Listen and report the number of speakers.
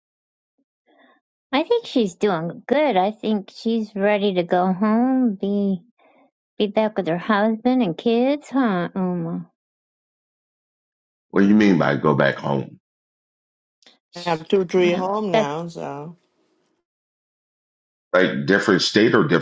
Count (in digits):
3